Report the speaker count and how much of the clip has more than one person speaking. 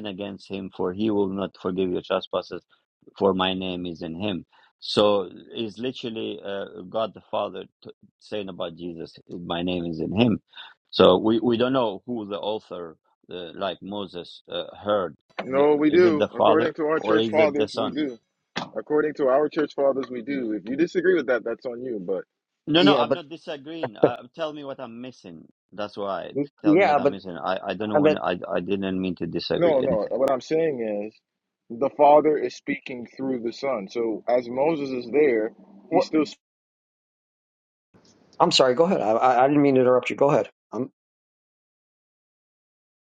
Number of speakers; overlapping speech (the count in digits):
3, about 10%